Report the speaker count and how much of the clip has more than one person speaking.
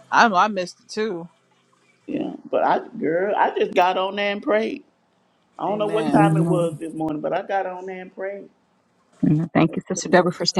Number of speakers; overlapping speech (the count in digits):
3, about 9%